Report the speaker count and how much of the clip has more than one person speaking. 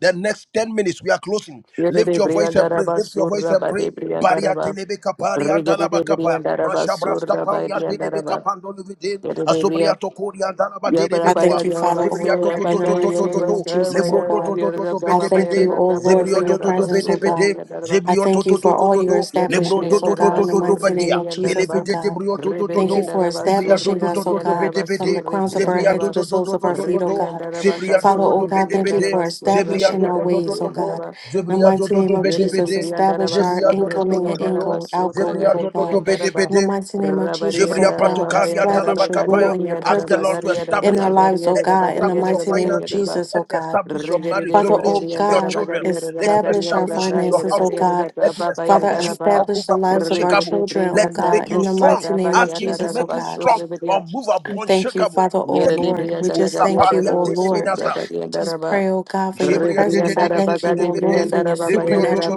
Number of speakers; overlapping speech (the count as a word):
three, about 86%